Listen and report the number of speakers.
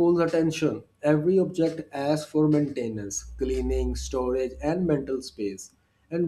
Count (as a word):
one